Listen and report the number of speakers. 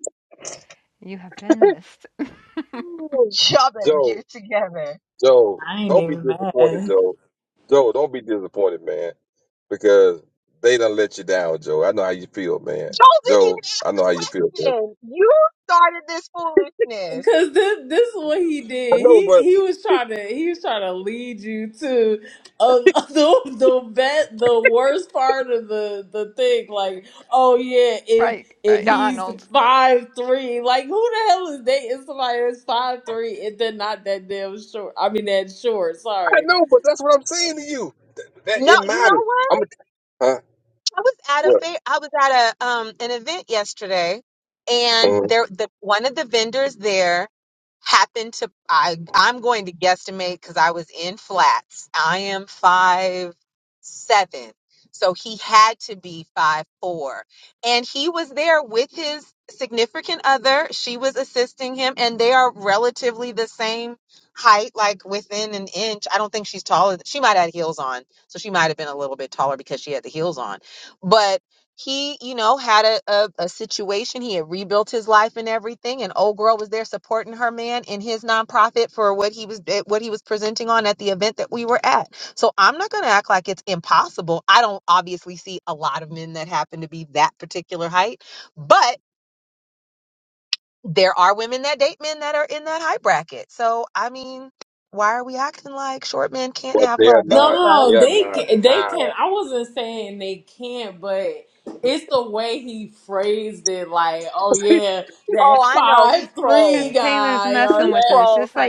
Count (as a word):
four